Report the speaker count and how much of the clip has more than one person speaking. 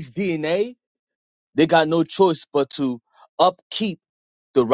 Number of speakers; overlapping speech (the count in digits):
1, no overlap